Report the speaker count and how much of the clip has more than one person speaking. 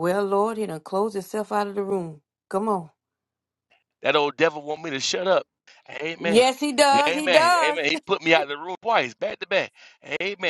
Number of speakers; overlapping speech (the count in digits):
2, about 9%